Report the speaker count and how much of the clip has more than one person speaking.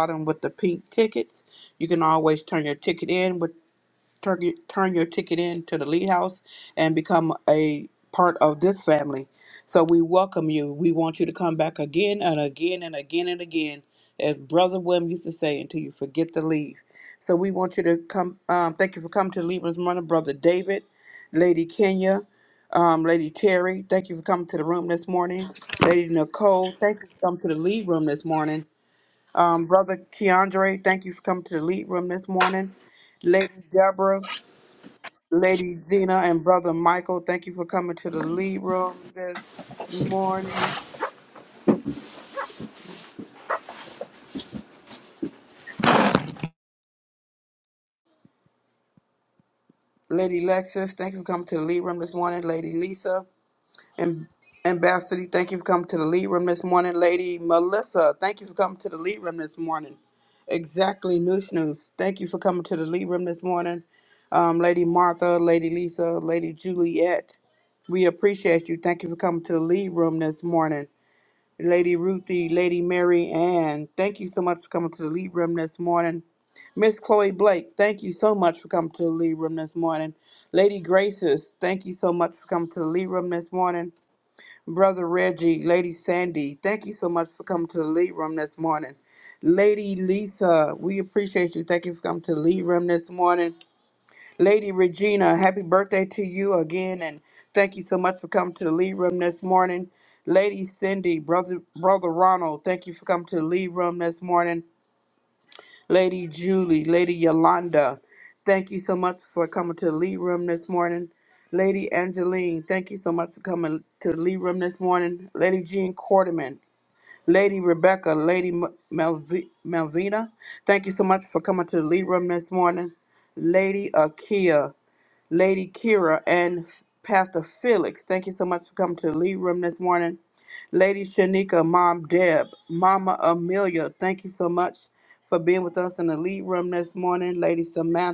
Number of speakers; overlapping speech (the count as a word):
one, no overlap